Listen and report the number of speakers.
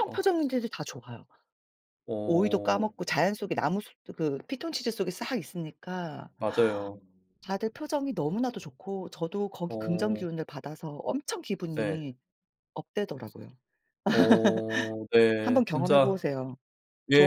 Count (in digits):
2